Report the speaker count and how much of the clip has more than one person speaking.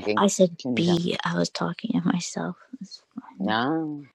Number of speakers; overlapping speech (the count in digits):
2, about 17%